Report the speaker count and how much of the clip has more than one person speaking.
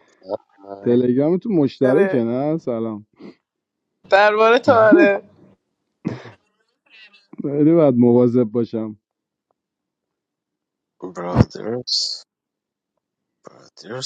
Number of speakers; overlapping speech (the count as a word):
three, about 4%